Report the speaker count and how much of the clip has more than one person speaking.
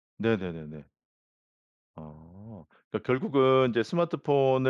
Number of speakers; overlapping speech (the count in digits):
1, no overlap